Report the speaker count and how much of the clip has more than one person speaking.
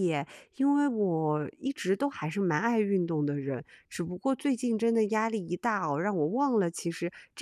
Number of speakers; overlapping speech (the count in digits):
1, no overlap